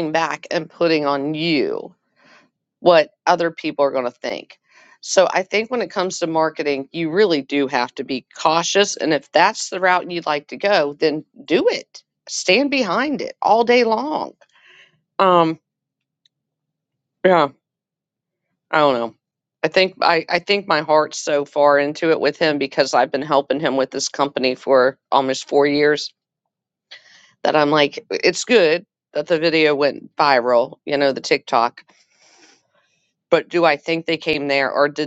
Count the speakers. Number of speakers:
1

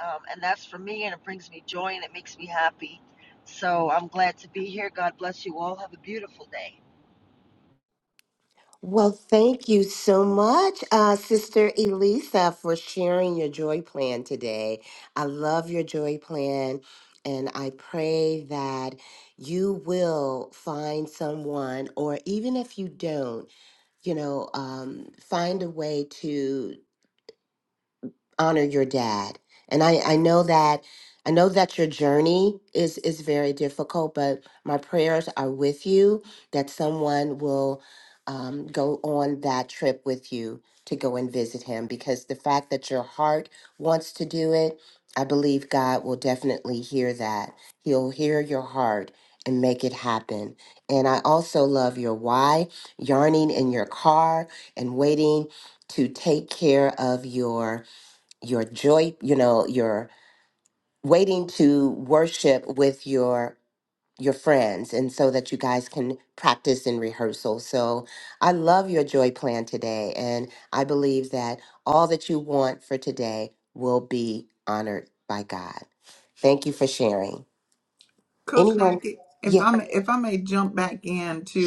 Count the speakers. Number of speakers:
3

